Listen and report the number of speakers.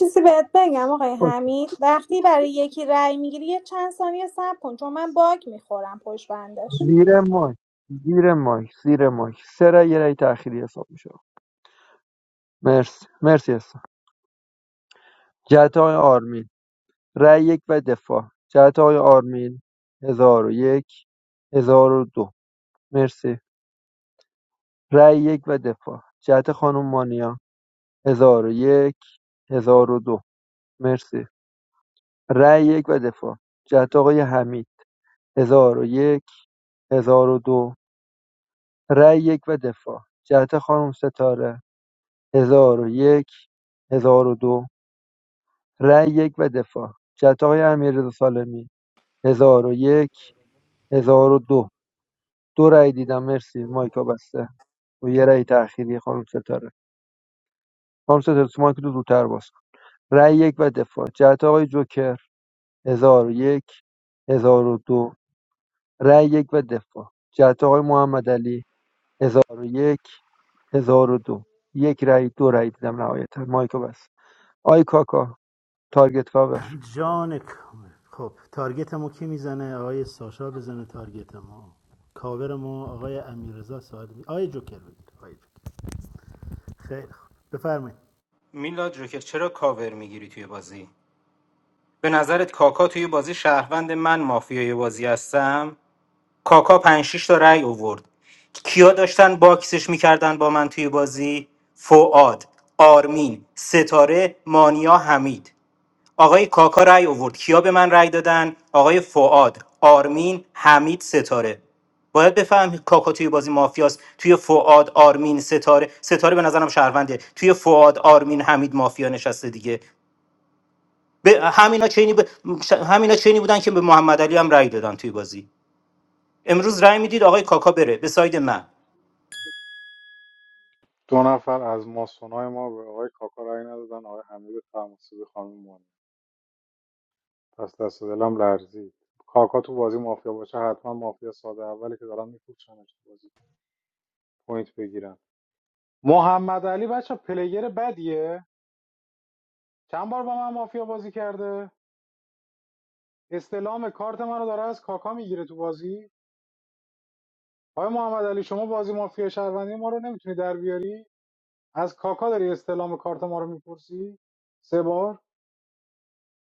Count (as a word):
five